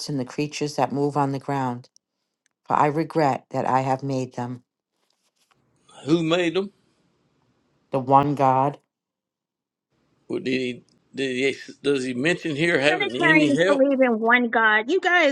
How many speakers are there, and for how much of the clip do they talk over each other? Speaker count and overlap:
3, about 6%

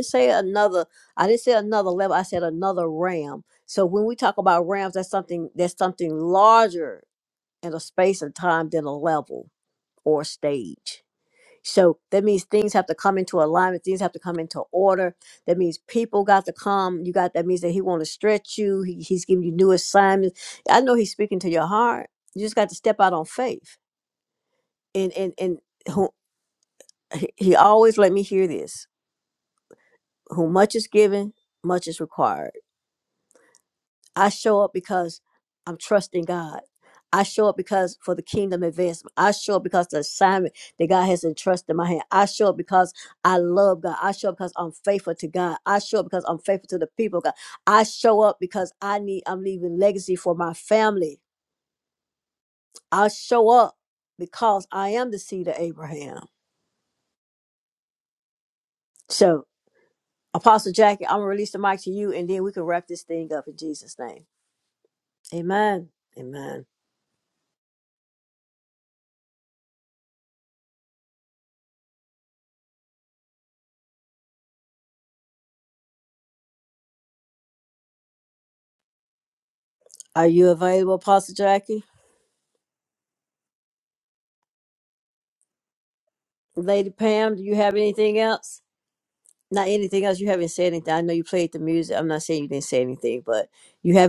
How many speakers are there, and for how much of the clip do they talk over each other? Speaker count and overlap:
1, no overlap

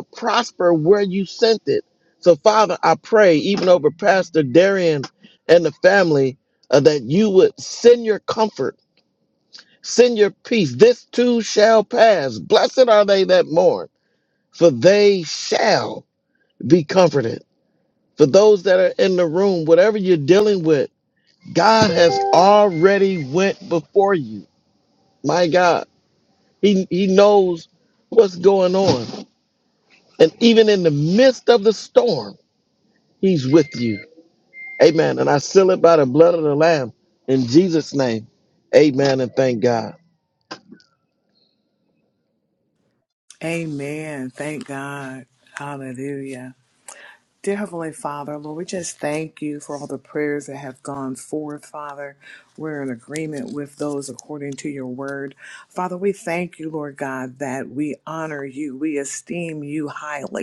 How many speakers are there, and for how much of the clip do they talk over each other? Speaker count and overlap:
2, no overlap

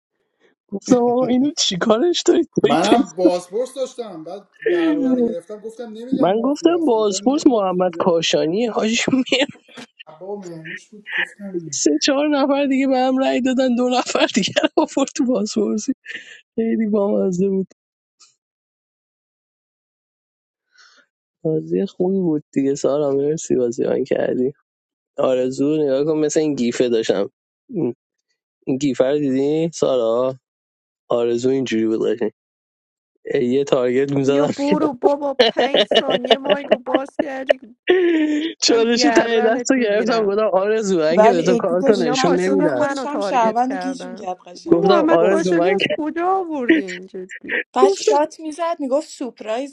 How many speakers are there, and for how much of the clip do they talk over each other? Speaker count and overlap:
4, about 18%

